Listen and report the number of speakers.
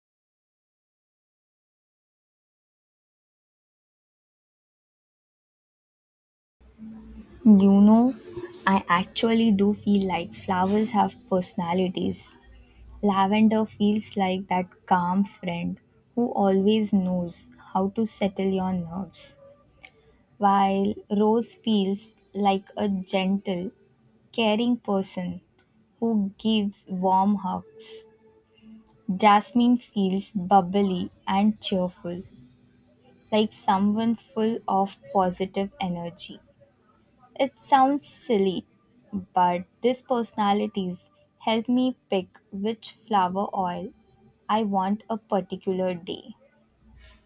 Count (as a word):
one